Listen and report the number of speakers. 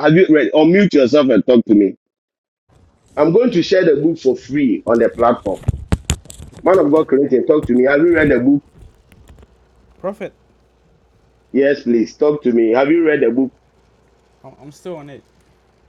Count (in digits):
2